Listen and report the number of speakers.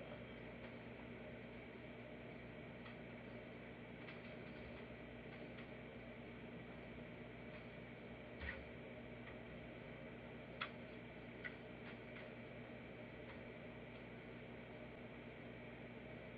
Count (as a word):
zero